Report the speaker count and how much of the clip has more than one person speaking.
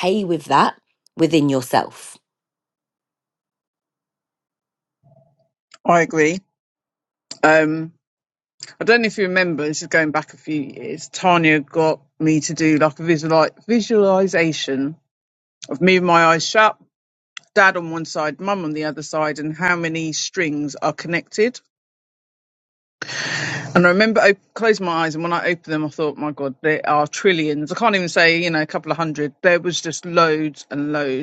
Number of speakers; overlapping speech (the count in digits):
2, no overlap